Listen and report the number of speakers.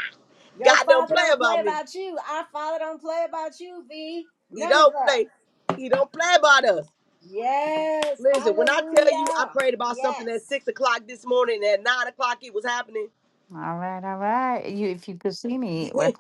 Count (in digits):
3